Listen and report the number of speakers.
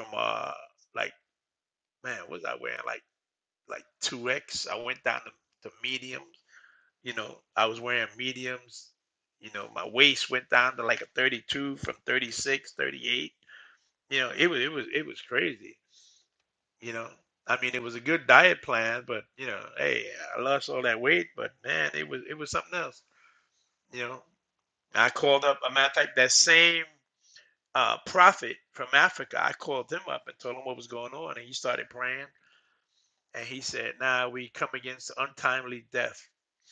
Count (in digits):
1